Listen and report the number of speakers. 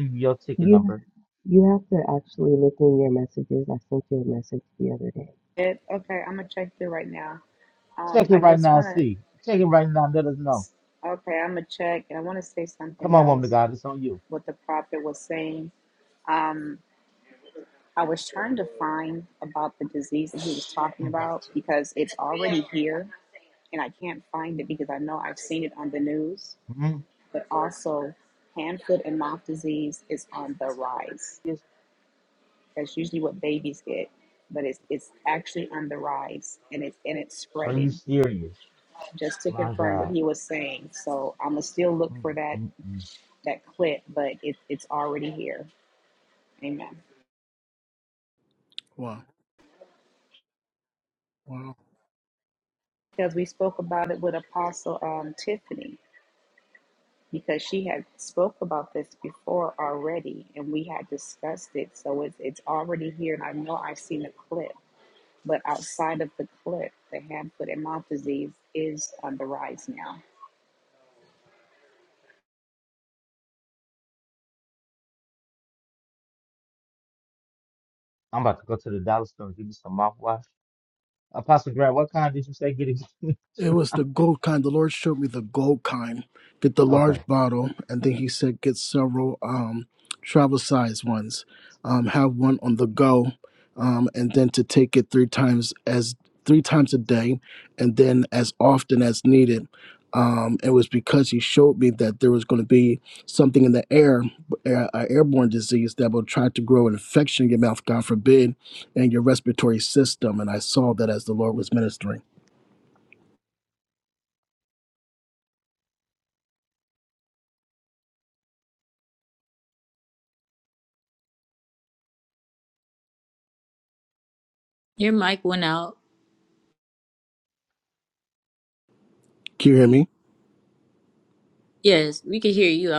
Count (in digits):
5